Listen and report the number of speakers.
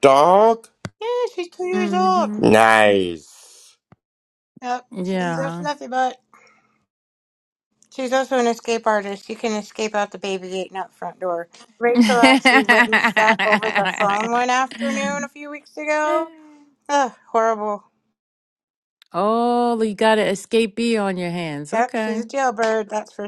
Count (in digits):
3